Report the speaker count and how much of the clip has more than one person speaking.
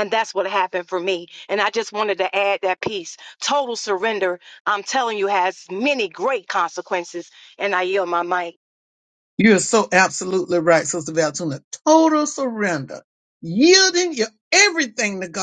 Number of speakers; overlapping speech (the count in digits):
2, no overlap